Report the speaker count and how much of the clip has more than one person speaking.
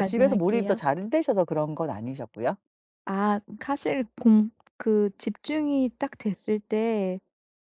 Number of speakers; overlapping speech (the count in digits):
2, about 10%